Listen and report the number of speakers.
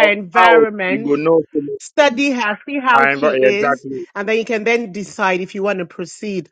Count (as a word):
two